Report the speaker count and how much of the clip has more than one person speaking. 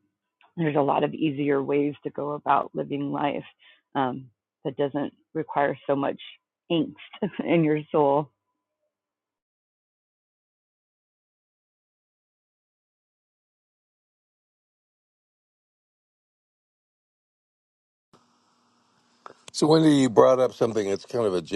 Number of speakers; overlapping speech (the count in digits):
2, no overlap